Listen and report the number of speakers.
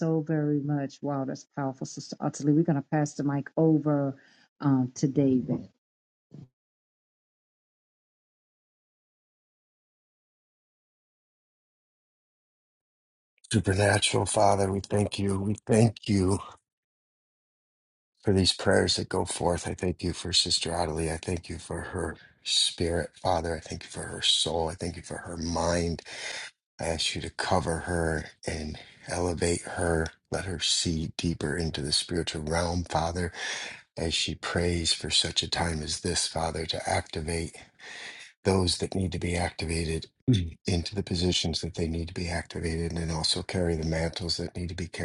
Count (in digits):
2